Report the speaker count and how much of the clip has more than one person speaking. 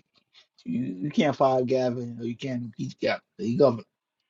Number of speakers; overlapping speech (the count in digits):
1, no overlap